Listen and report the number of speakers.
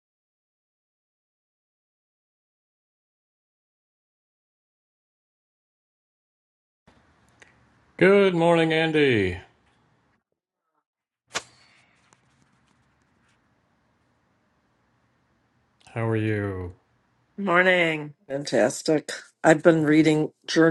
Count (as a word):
two